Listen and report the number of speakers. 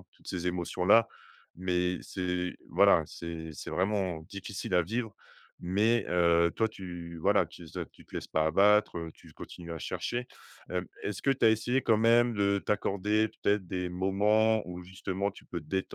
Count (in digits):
1